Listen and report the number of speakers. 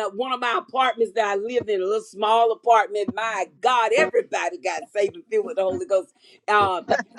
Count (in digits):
1